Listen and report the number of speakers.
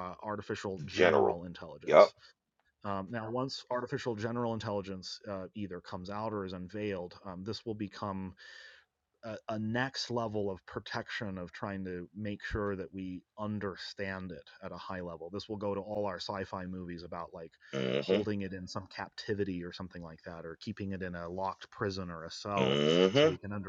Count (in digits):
2